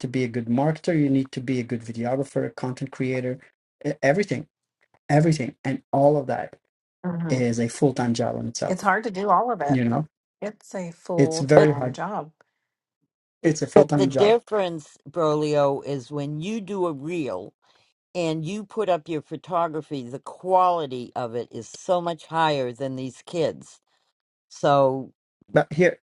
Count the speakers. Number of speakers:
3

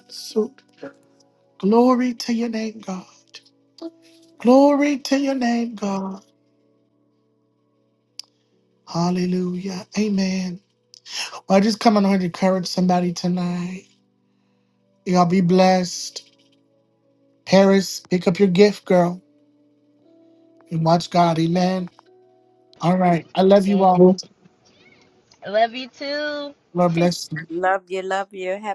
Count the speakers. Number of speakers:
3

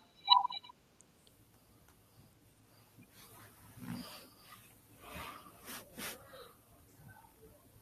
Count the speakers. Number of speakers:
0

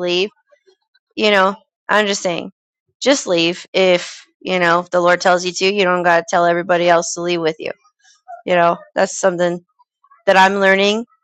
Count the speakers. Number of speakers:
1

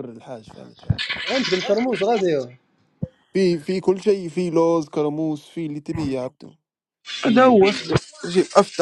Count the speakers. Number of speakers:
3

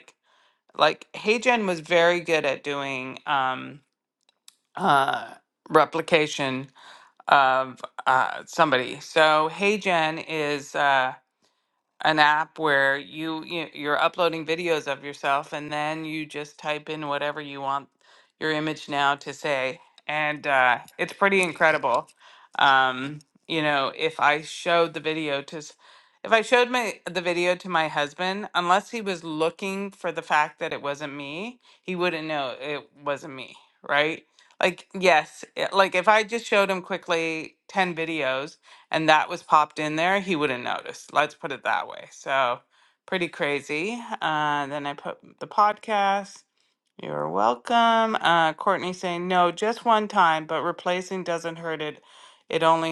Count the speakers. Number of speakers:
1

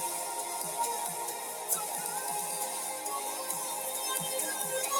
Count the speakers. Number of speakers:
0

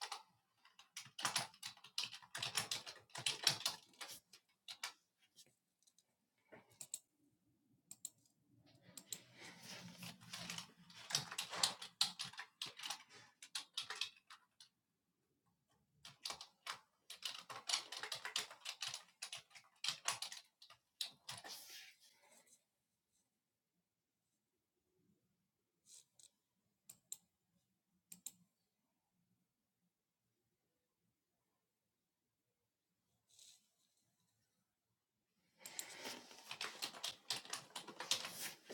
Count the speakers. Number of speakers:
0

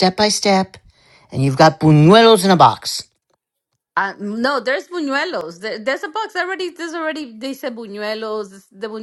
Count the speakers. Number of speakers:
2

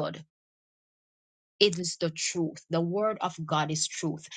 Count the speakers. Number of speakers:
1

